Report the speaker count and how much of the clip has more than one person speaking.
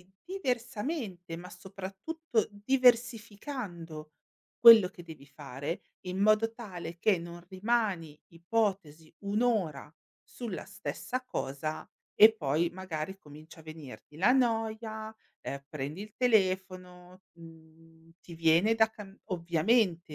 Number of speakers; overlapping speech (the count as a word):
one, no overlap